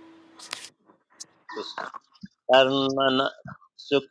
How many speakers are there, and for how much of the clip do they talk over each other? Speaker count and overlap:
one, no overlap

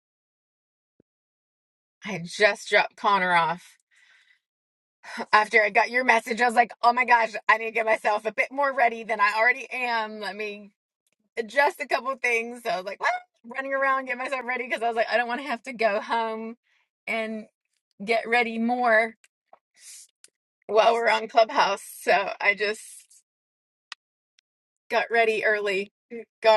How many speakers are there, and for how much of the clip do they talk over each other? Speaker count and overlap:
one, no overlap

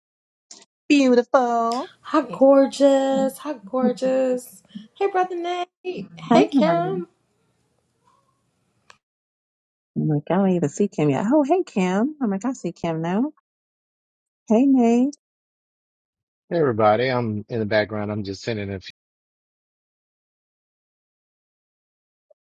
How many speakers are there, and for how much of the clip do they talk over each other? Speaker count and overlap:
three, about 3%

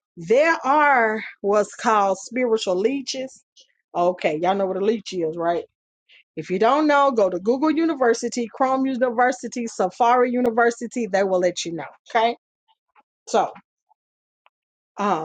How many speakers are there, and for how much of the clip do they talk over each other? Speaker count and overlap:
one, no overlap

